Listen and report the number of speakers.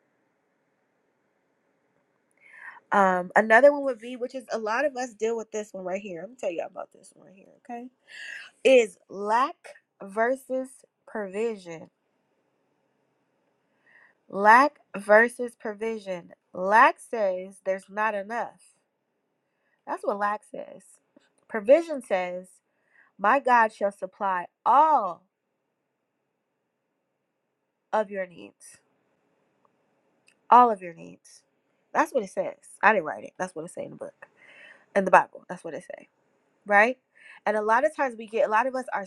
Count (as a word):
one